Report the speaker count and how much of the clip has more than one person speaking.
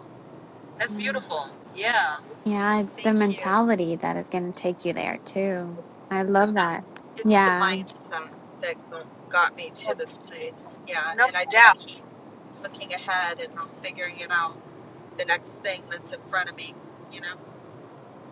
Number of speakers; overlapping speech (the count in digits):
3, about 11%